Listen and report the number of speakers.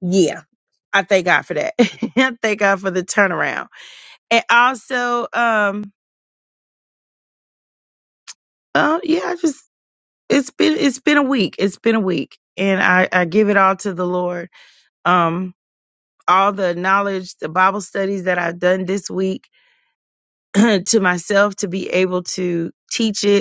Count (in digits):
1